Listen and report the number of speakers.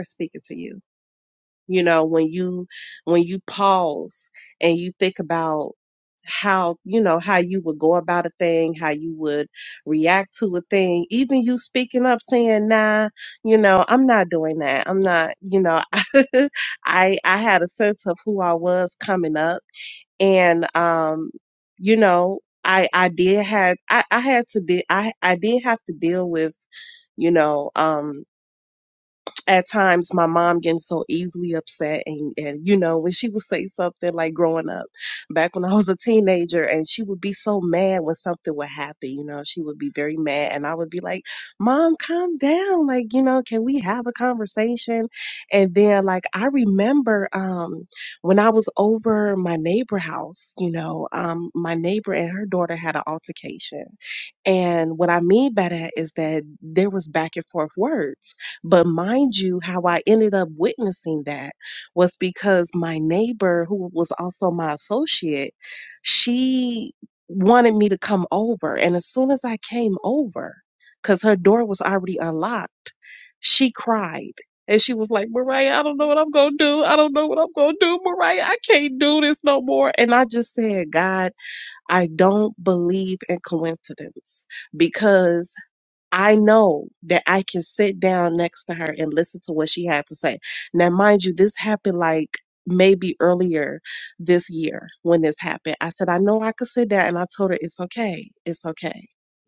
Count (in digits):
1